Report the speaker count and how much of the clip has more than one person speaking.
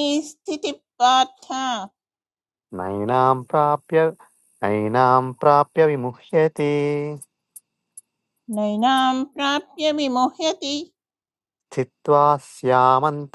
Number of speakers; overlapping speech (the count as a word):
two, no overlap